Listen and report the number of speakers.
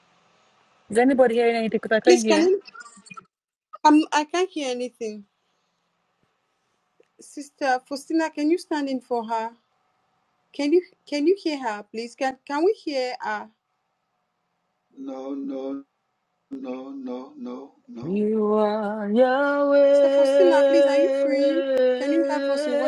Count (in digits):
3